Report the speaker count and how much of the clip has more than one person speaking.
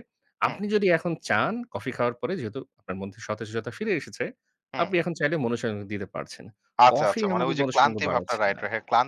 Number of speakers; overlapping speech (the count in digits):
2, about 23%